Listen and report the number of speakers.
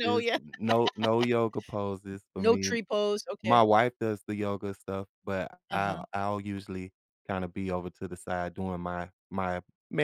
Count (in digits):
2